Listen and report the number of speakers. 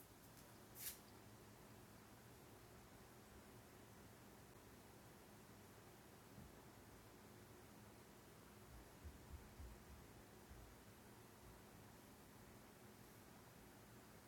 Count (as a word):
zero